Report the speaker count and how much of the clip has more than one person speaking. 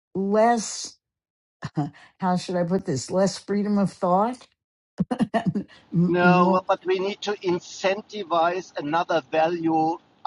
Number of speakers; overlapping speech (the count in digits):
2, about 5%